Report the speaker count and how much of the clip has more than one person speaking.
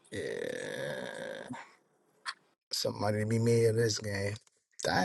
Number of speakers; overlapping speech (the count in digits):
1, no overlap